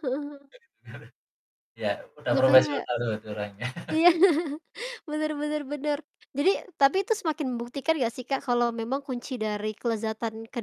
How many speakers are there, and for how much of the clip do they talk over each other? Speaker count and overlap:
2, about 5%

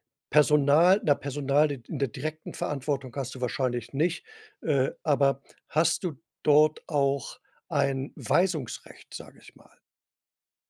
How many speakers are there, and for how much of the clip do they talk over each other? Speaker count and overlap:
1, no overlap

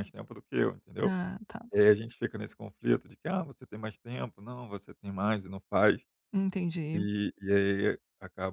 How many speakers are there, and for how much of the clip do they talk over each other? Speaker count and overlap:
2, about 2%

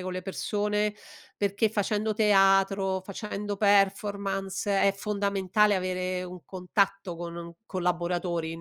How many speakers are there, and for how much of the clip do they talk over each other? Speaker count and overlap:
1, no overlap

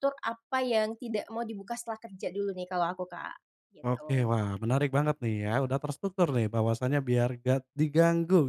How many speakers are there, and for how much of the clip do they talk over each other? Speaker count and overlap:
2, about 6%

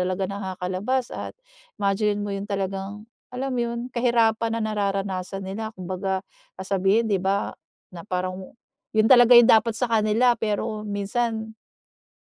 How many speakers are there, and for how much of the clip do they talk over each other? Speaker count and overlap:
1, no overlap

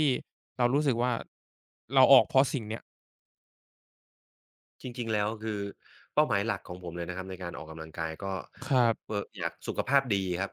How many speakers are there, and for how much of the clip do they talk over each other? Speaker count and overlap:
2, about 1%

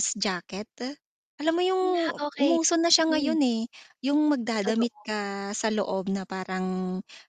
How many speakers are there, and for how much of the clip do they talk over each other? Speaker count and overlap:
2, about 15%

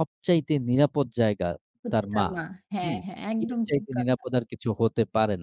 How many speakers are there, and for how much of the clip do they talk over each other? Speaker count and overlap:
2, about 25%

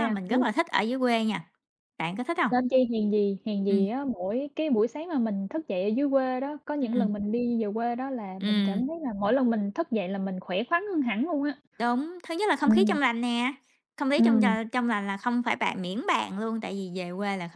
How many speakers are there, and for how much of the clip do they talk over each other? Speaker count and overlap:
2, about 12%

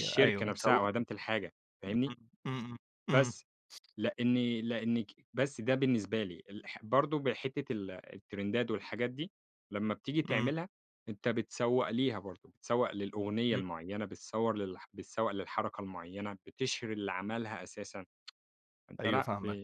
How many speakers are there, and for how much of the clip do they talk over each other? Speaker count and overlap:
2, about 10%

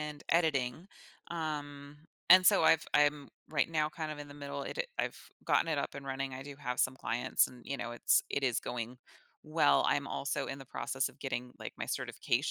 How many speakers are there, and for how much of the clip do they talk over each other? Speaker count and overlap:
1, no overlap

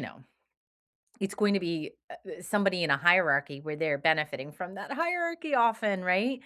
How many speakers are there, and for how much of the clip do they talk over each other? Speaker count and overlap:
1, no overlap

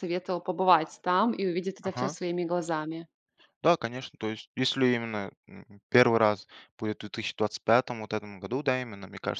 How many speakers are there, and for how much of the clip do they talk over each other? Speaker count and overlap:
2, about 3%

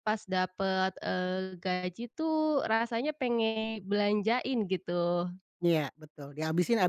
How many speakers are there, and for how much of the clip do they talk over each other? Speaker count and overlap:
2, no overlap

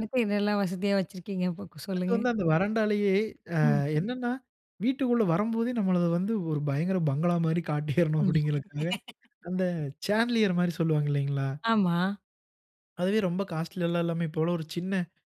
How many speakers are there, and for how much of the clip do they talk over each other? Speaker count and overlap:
2, about 4%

